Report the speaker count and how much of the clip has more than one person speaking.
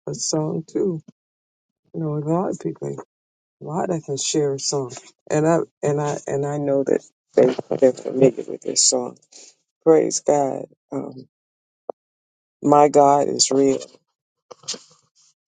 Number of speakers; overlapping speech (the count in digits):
1, no overlap